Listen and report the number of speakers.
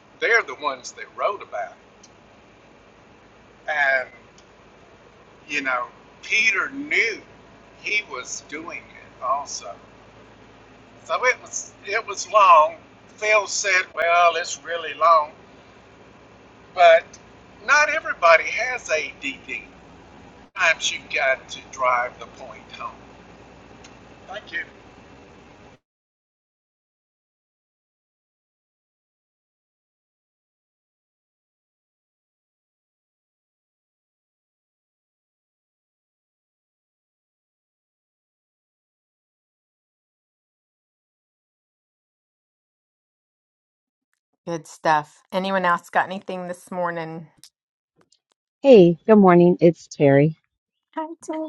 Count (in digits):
3